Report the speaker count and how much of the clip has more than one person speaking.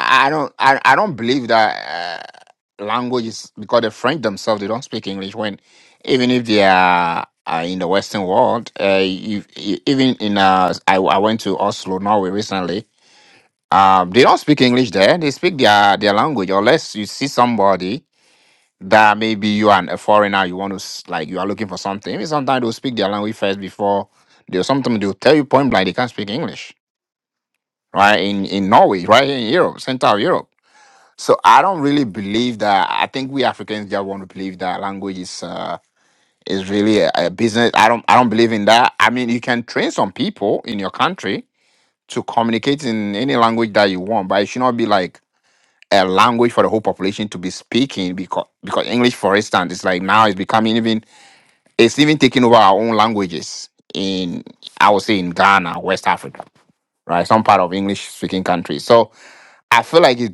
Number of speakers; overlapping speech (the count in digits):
1, no overlap